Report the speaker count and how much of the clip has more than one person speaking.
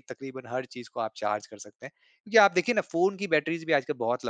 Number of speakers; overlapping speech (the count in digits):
1, no overlap